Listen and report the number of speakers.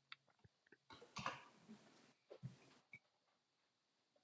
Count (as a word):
zero